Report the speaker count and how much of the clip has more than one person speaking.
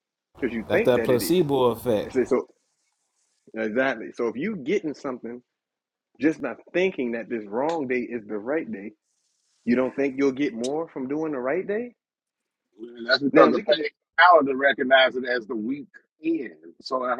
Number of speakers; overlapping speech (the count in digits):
3, about 8%